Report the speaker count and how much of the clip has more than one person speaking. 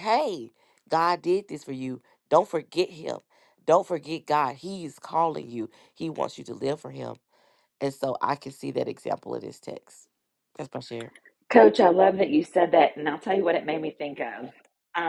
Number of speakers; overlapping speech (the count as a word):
two, no overlap